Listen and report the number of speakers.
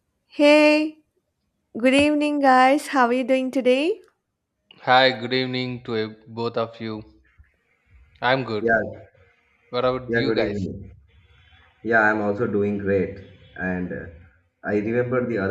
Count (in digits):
3